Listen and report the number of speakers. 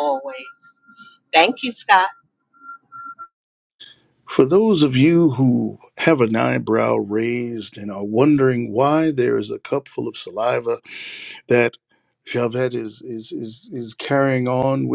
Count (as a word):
two